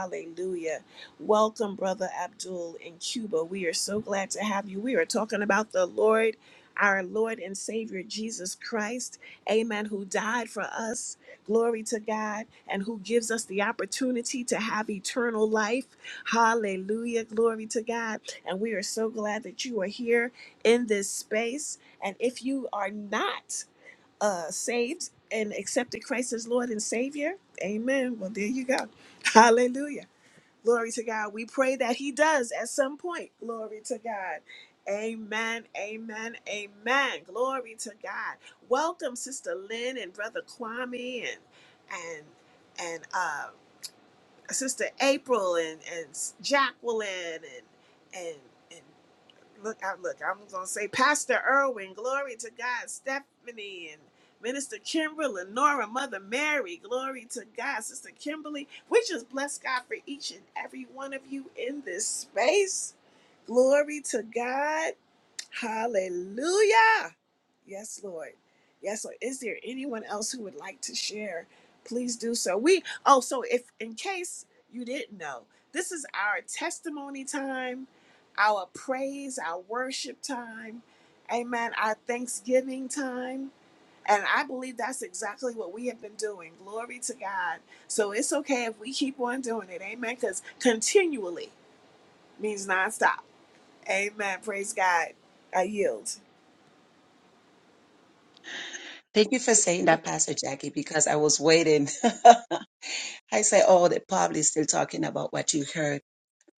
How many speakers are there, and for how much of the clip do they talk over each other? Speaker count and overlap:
two, no overlap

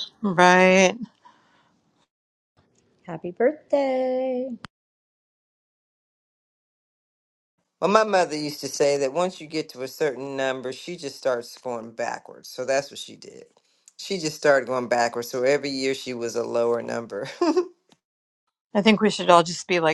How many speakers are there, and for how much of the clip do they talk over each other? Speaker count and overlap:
three, no overlap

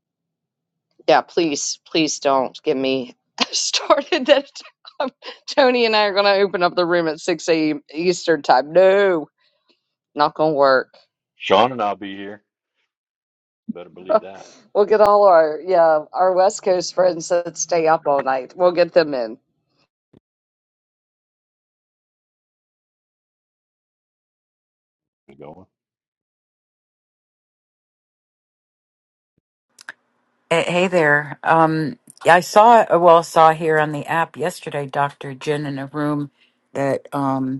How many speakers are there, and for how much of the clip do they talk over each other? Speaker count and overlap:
three, no overlap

